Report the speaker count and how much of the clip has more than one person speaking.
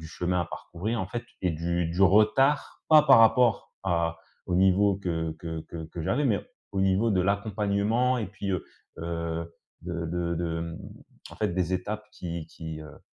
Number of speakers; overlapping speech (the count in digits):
1, no overlap